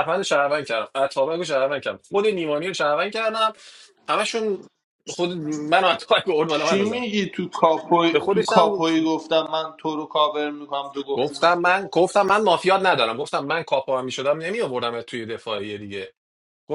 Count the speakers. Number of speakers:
2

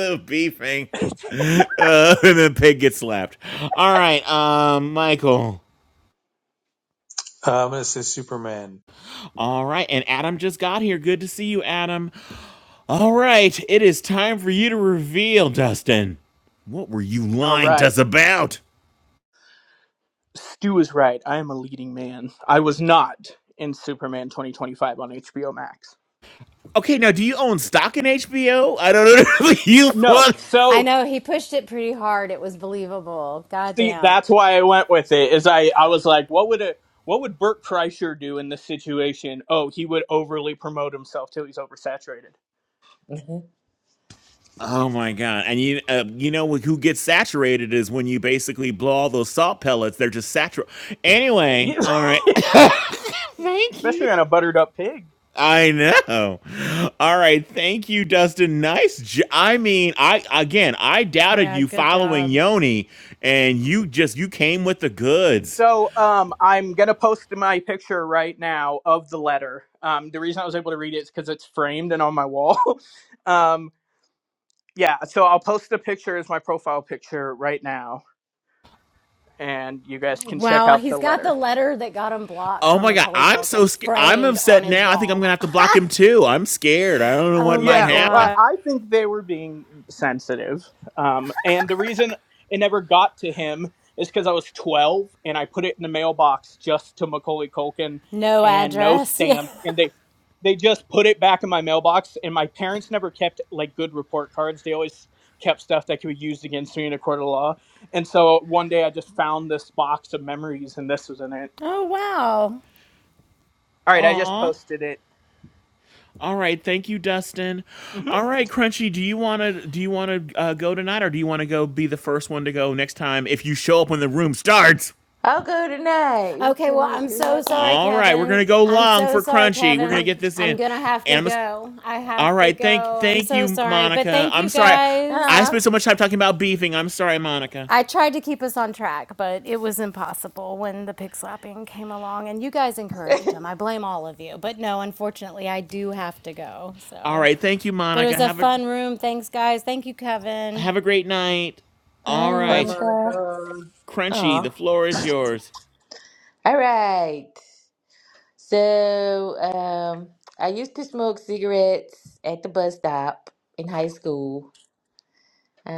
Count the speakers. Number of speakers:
5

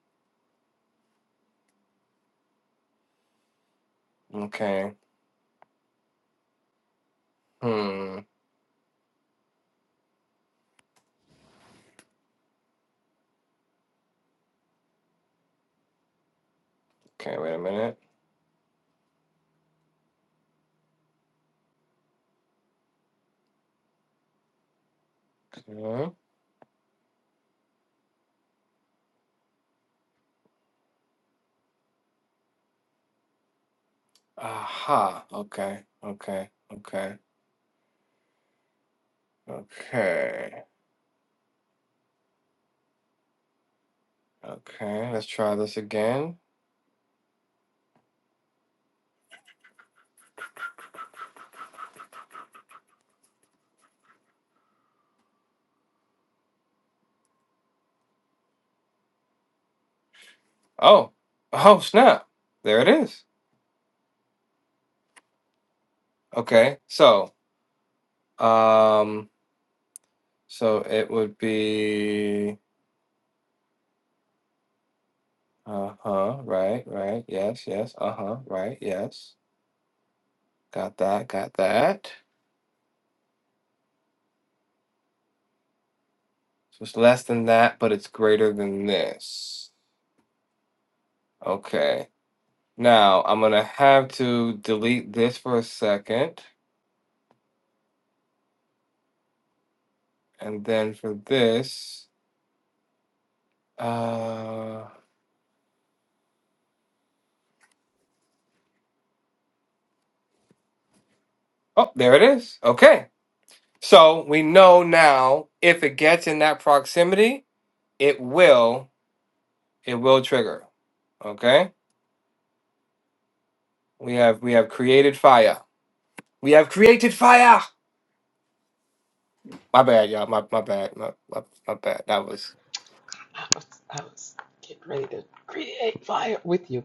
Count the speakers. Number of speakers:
2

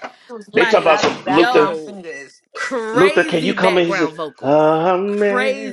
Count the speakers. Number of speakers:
3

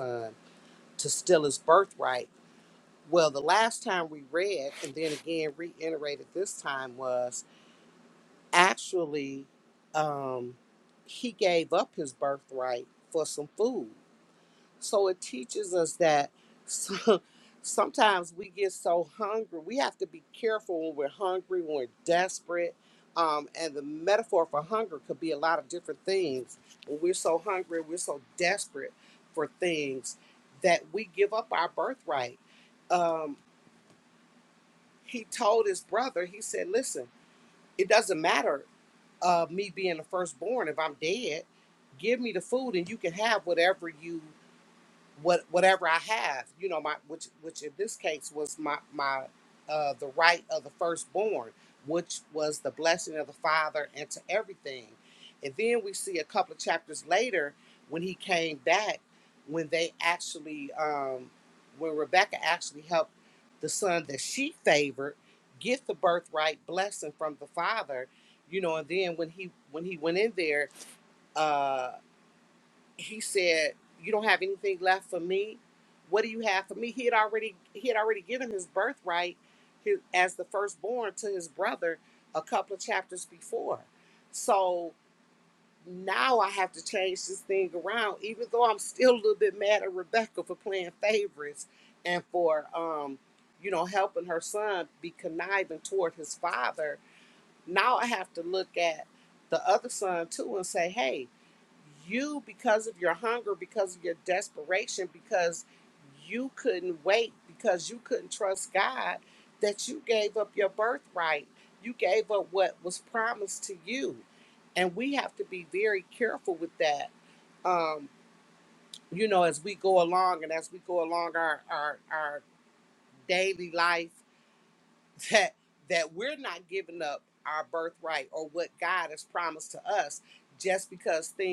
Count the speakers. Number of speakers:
1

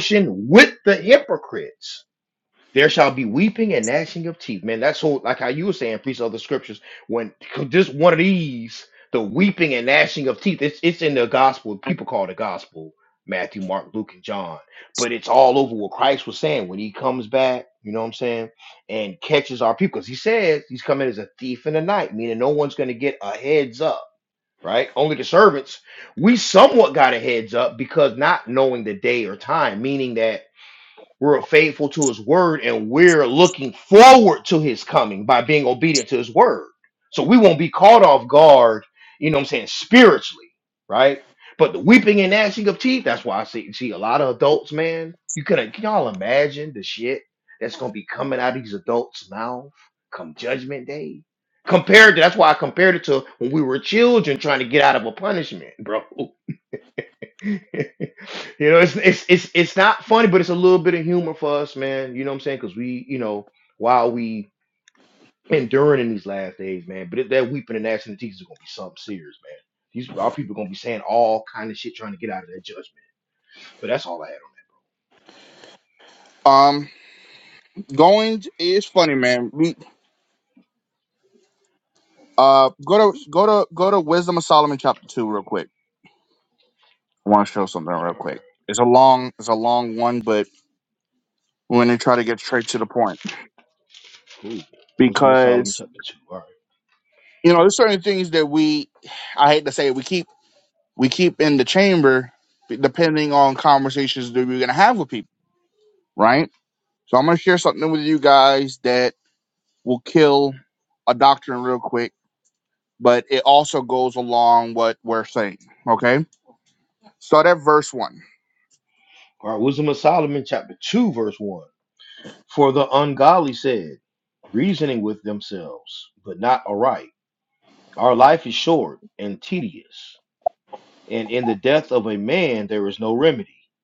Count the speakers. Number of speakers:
2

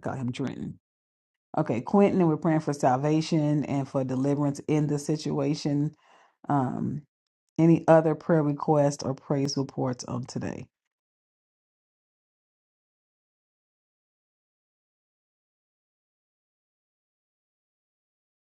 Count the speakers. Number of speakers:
1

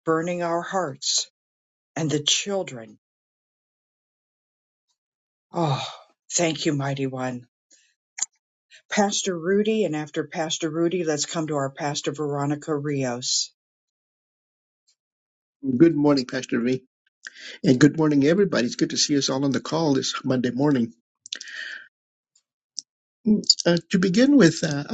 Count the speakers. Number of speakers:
2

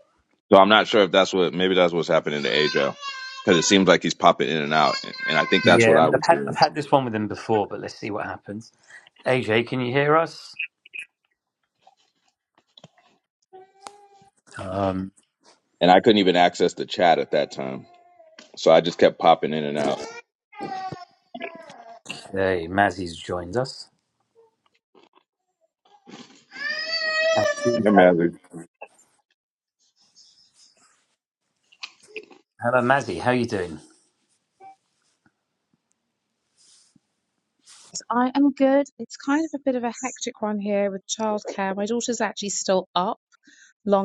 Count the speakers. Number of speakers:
3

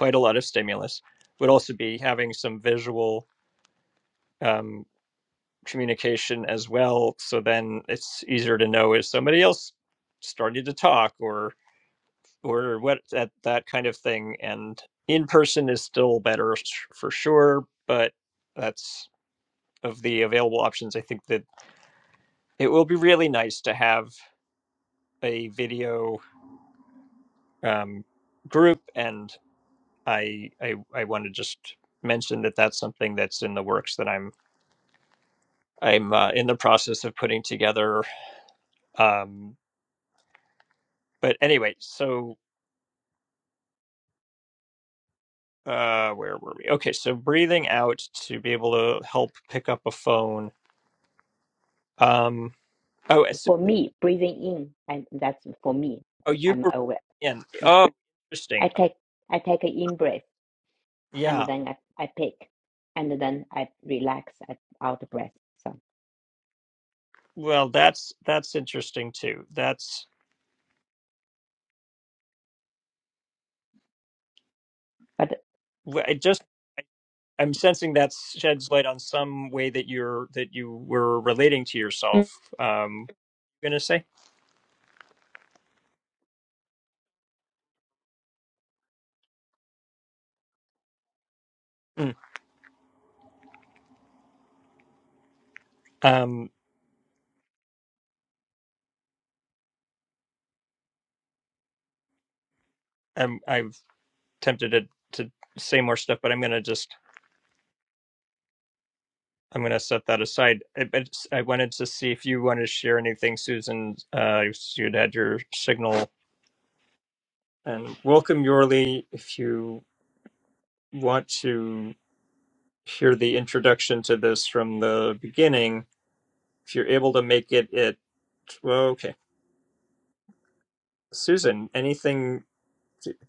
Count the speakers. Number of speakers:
2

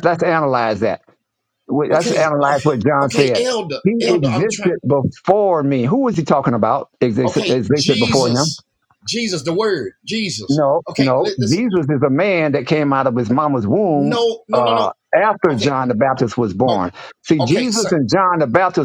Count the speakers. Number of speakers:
2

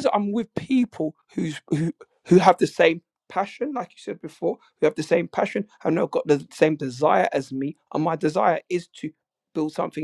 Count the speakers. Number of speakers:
1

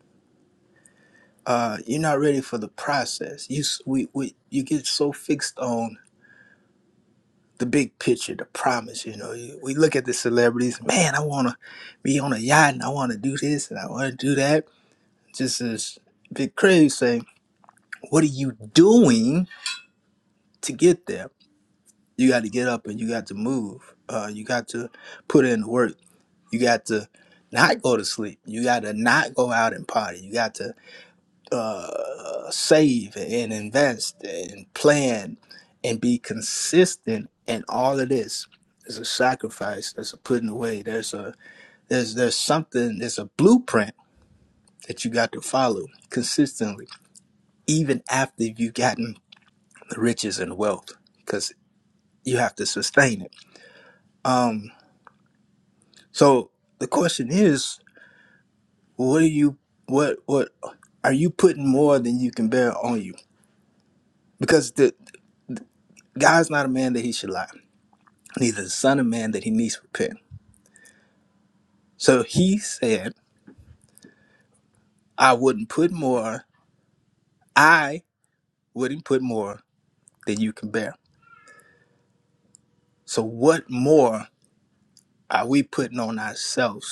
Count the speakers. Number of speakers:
1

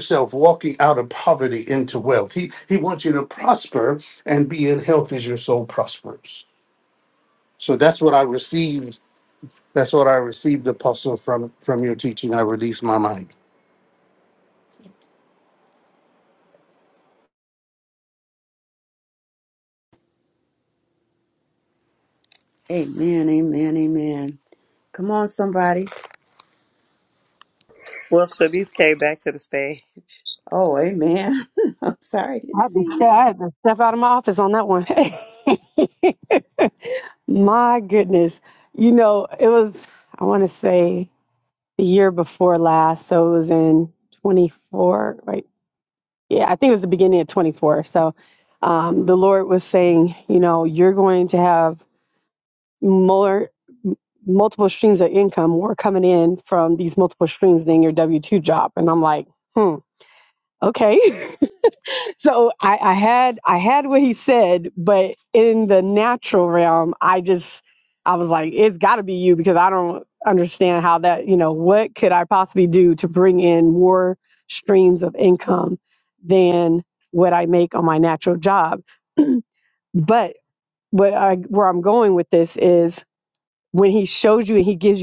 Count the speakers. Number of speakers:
4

